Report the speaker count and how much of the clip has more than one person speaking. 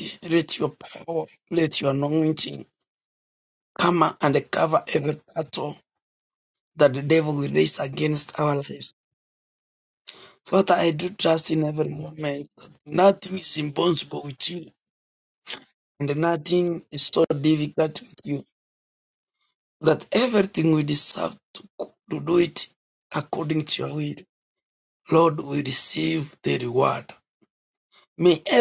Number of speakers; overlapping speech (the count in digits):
1, no overlap